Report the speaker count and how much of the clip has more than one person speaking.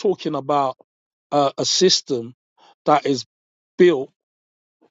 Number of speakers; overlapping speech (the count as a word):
one, no overlap